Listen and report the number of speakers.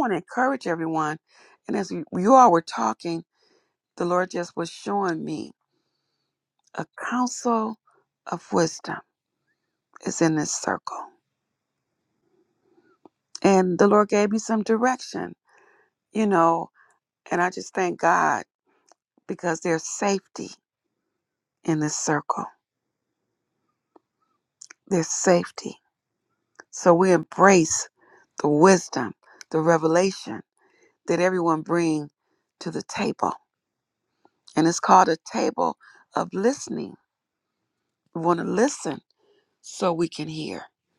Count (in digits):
1